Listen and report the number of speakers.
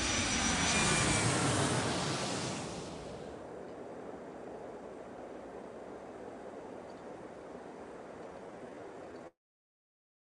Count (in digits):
0